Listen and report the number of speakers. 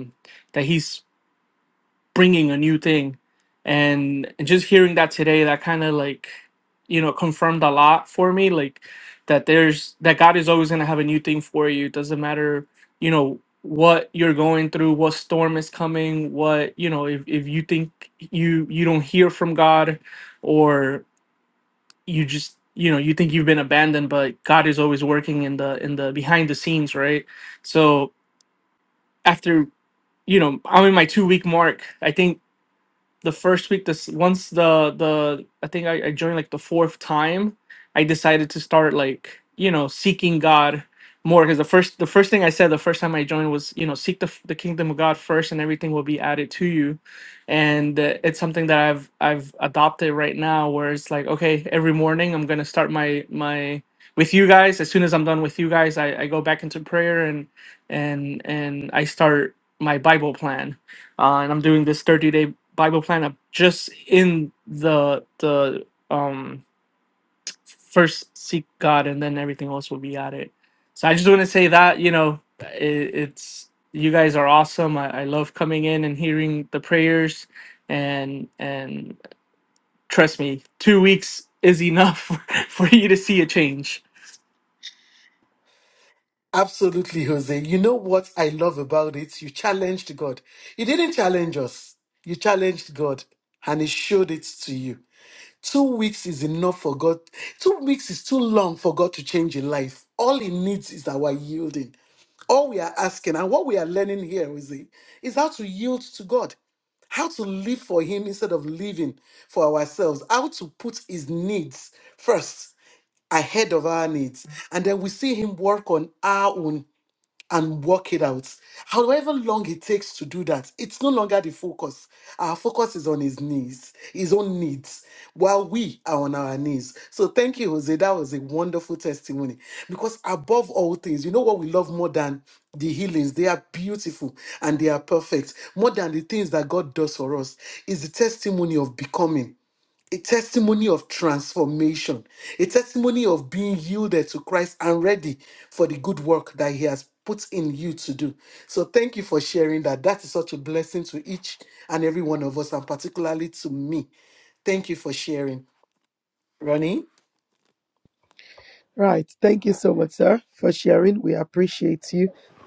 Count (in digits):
3